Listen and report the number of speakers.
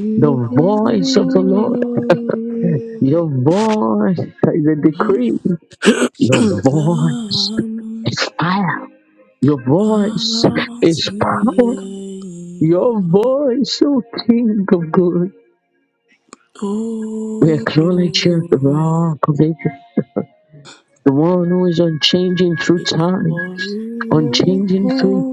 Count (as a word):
two